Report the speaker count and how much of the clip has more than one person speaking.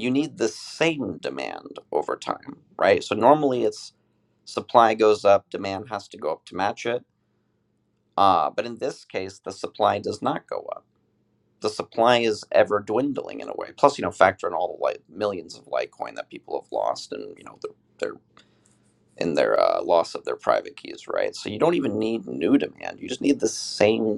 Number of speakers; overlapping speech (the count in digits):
1, no overlap